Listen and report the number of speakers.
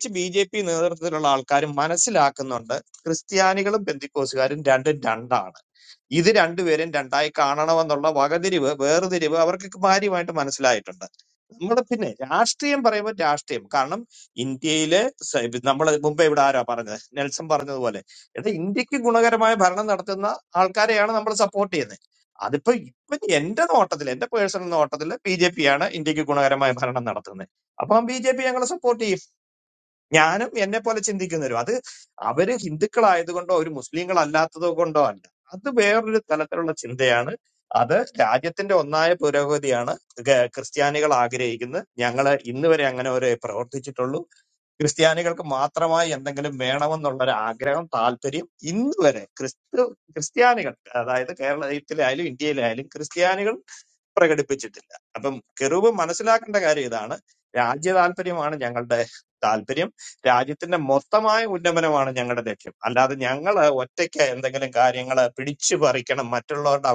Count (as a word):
one